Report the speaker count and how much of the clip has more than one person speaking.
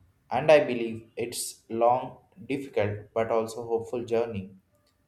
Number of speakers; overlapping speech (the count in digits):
1, no overlap